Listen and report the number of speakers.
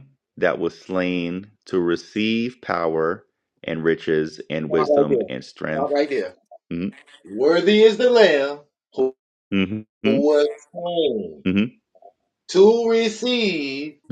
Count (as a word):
two